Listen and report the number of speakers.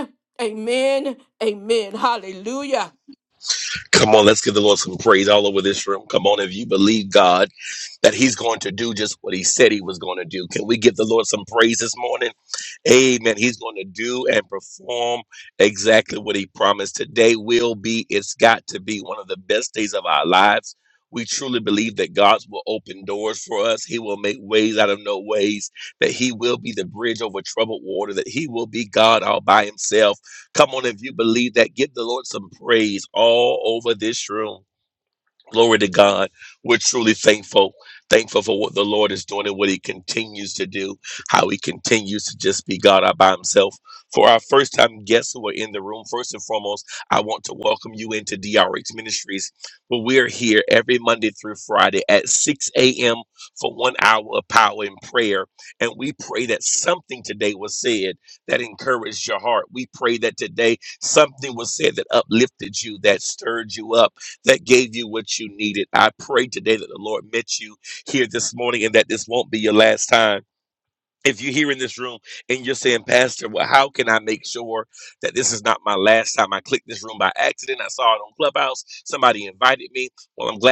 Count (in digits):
2